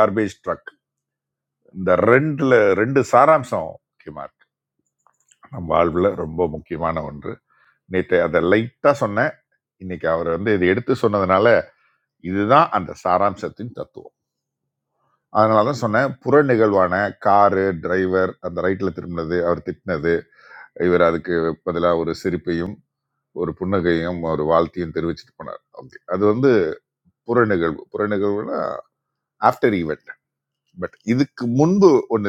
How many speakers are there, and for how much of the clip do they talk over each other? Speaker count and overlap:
1, no overlap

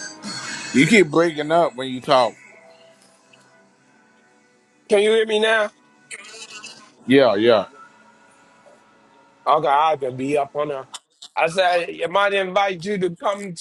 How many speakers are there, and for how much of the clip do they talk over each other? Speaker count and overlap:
2, no overlap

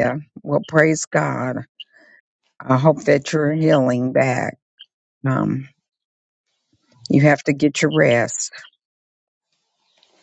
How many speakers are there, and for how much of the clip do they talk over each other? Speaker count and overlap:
1, no overlap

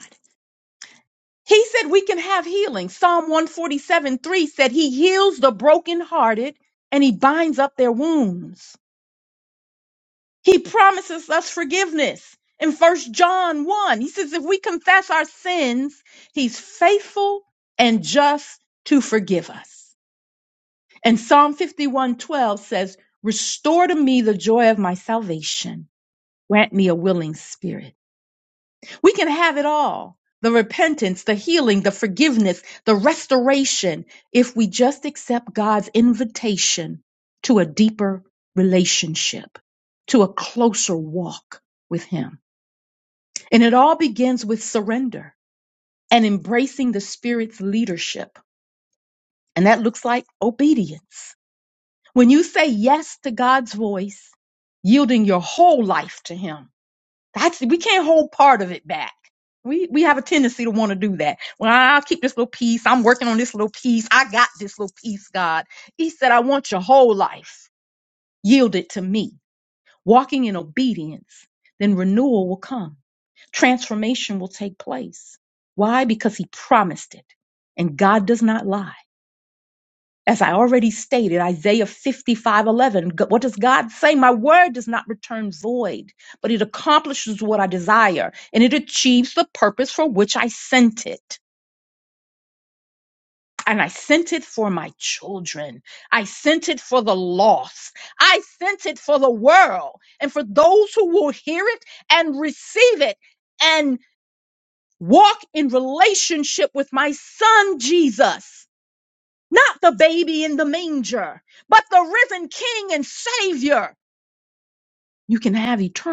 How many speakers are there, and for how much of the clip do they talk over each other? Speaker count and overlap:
1, no overlap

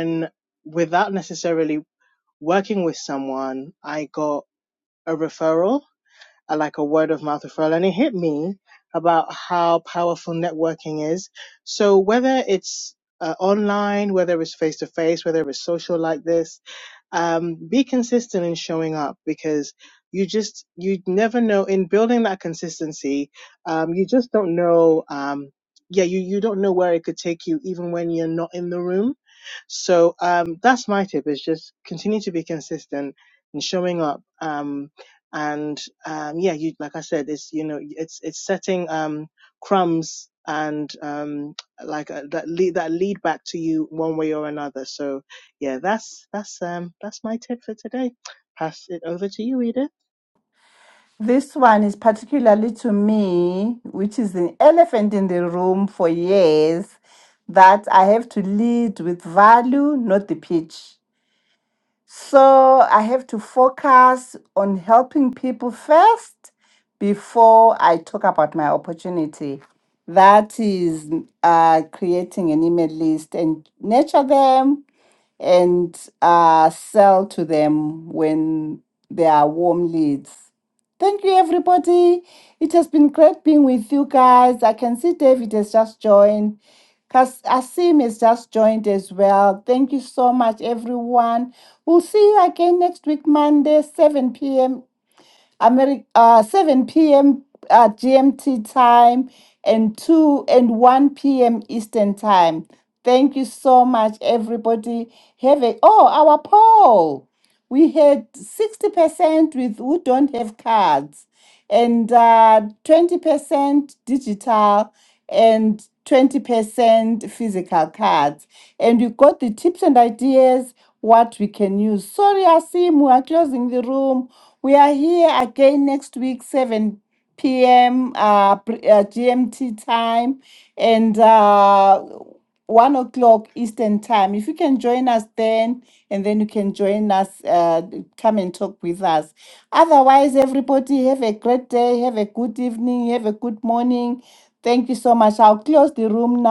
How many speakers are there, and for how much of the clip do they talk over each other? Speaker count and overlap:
2, no overlap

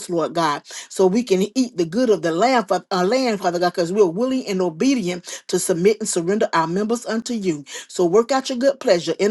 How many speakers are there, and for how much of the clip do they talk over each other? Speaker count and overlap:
1, no overlap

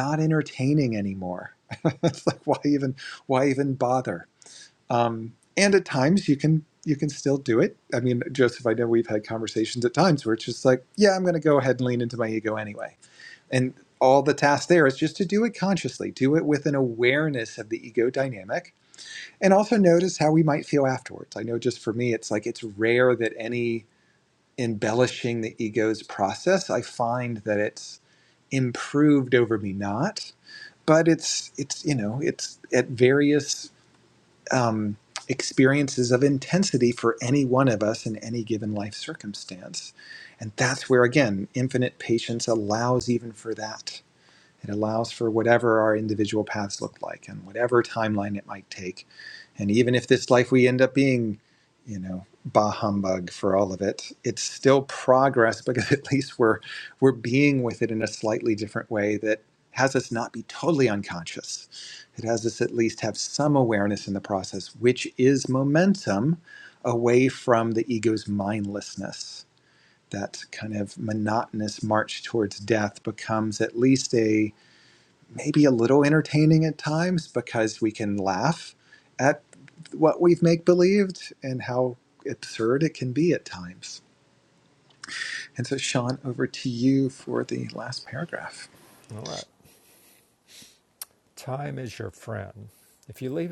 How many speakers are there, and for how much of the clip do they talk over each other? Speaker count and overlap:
2, no overlap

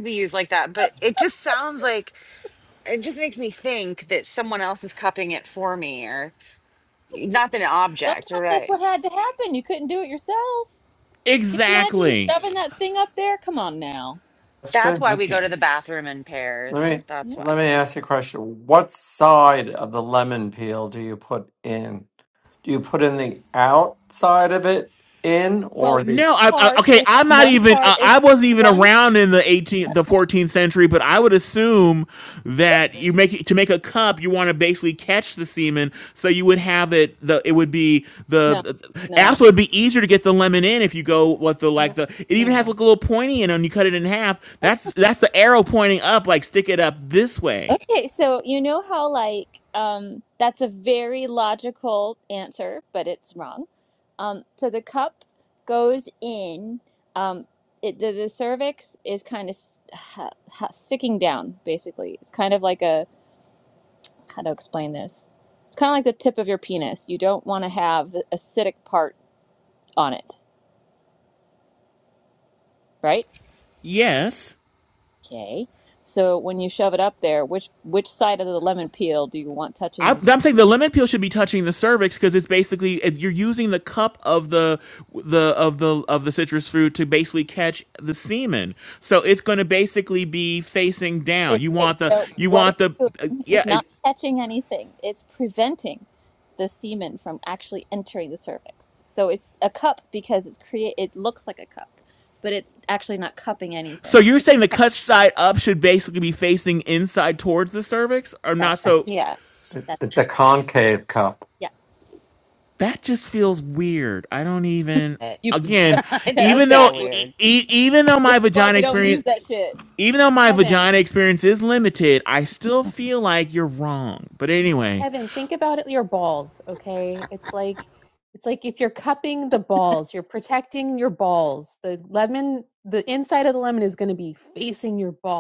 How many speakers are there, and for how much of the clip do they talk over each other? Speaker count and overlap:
5, about 8%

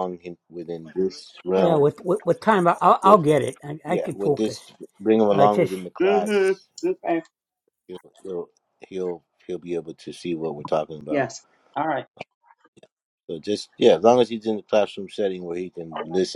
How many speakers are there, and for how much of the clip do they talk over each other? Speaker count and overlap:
3, about 13%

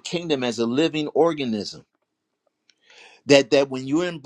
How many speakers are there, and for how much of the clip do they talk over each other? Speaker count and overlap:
1, no overlap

